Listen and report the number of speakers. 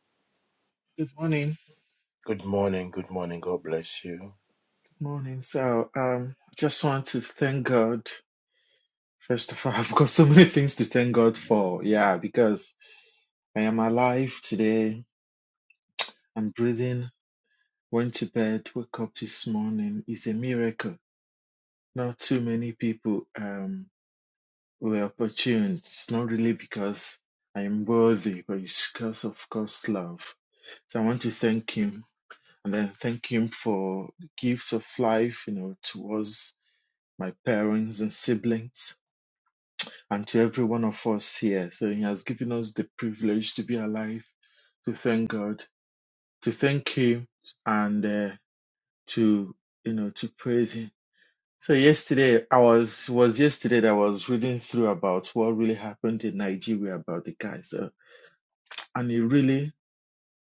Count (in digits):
2